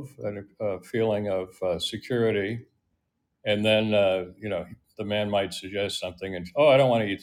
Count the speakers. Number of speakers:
one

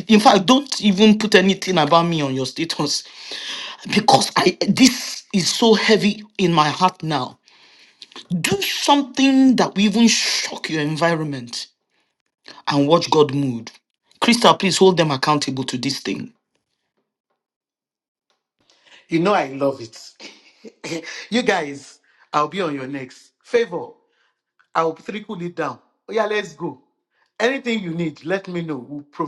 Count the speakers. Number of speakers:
two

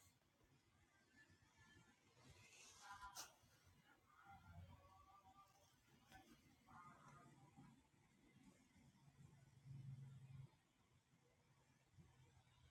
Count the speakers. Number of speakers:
zero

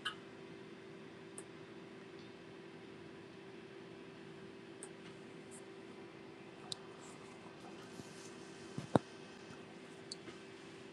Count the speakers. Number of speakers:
zero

